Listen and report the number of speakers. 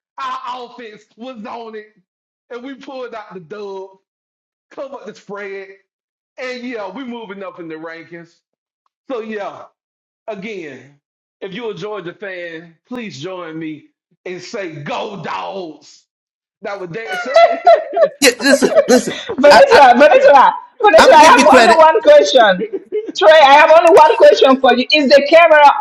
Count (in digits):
3